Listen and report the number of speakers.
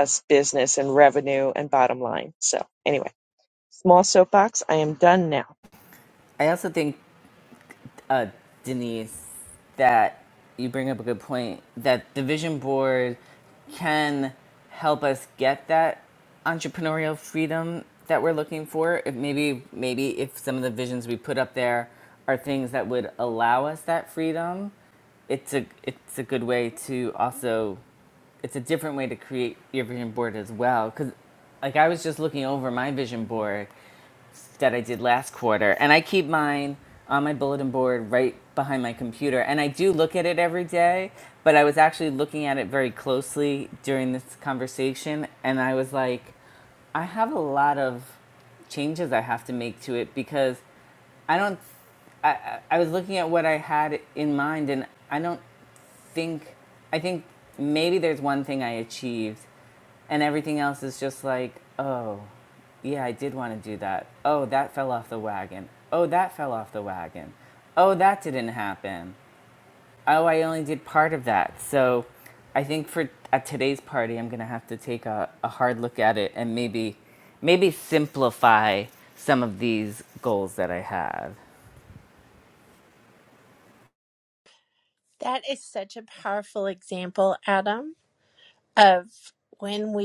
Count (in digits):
3